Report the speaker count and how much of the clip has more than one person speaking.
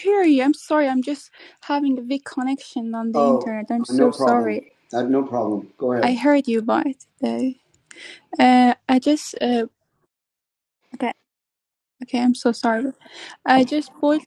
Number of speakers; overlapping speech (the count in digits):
2, about 11%